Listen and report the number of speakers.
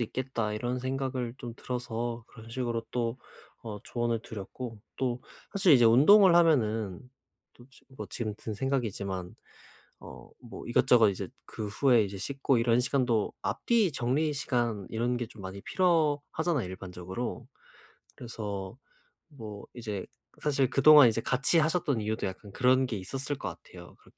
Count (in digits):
1